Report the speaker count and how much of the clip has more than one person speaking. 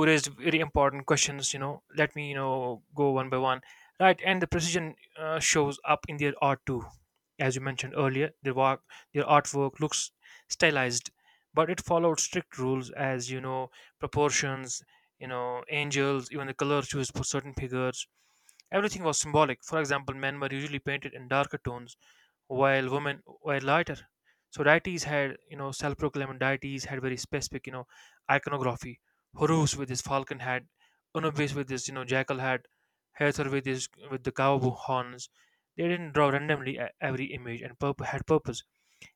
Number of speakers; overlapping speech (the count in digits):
1, no overlap